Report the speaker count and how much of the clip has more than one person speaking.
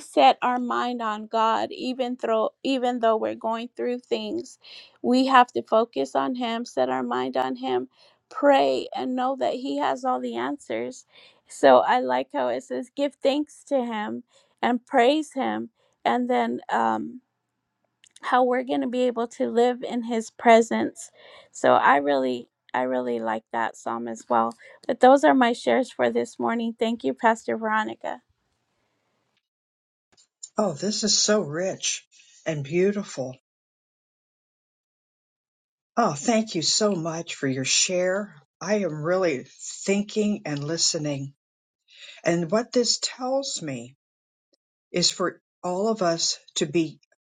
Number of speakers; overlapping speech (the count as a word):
two, no overlap